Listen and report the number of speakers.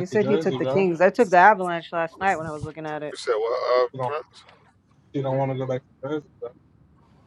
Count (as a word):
three